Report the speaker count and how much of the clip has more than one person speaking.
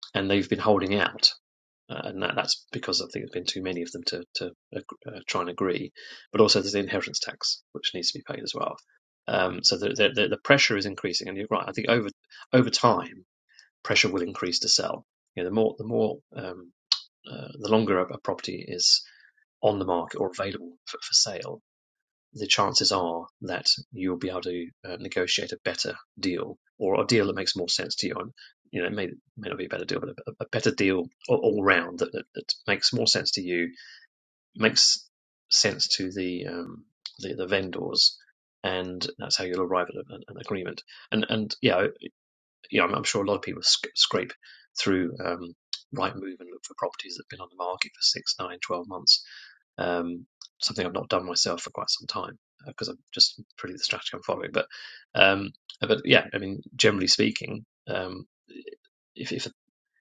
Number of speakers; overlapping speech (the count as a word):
one, no overlap